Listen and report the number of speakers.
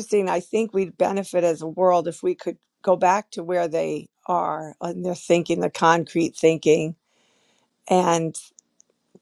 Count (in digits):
1